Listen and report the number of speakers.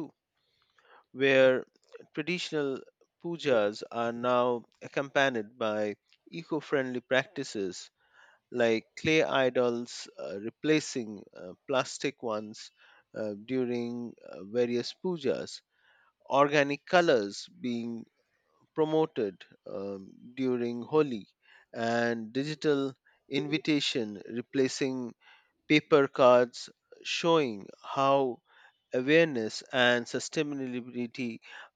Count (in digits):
1